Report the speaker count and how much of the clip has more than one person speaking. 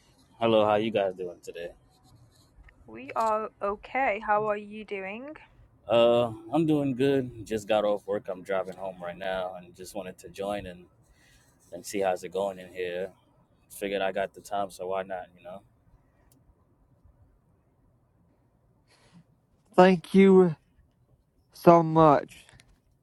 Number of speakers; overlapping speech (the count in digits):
3, no overlap